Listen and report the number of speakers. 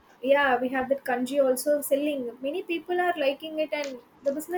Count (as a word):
one